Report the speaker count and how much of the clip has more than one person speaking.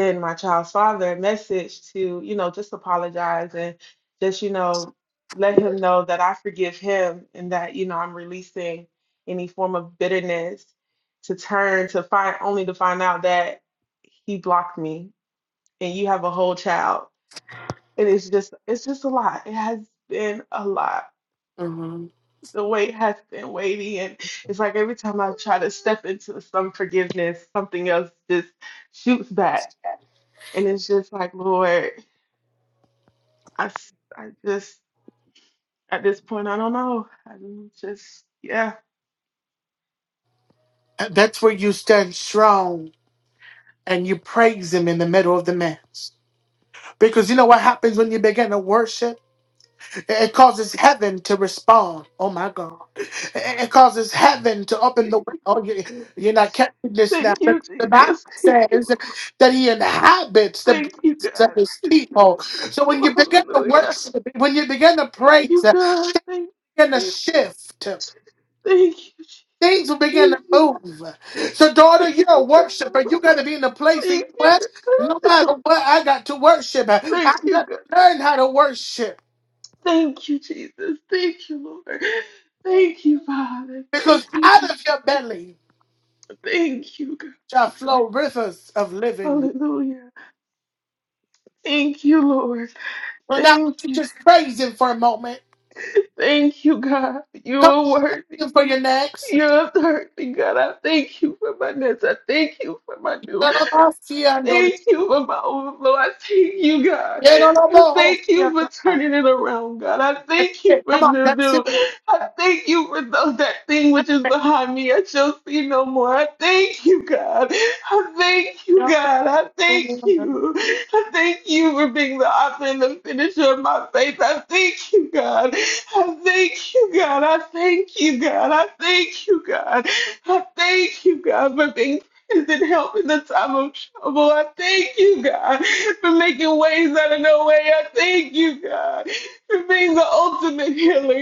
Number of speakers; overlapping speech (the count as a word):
two, about 8%